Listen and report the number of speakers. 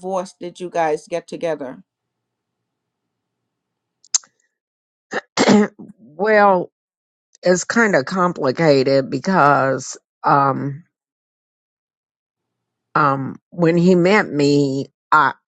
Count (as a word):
two